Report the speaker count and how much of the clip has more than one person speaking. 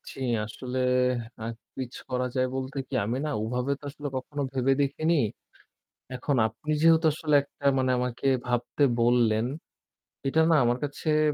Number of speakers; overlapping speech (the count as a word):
one, no overlap